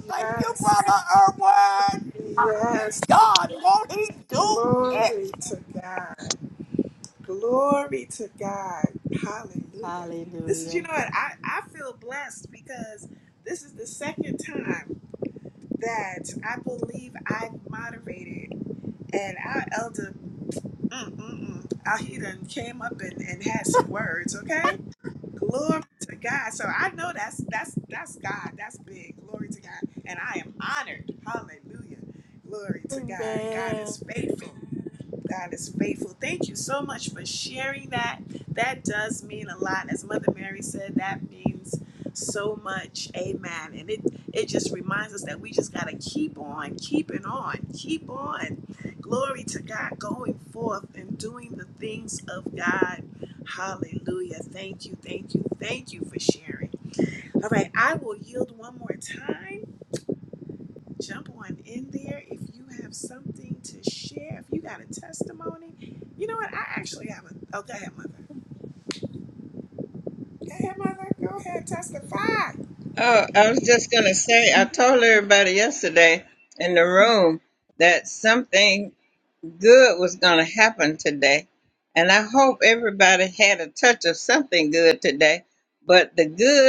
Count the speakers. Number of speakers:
three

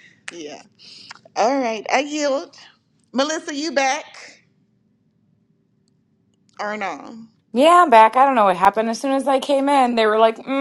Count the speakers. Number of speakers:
two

